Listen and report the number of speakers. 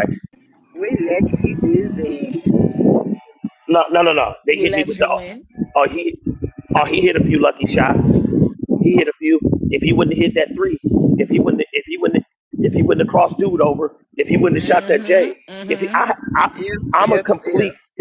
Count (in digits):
3